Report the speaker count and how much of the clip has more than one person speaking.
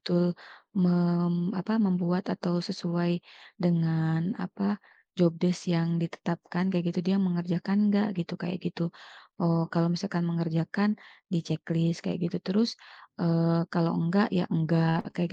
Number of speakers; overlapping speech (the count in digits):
1, no overlap